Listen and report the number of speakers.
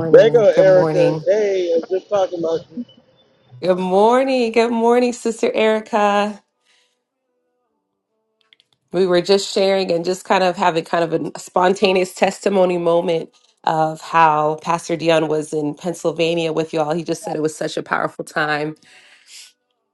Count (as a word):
two